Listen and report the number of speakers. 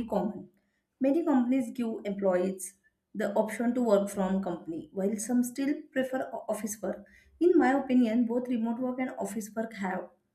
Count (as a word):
one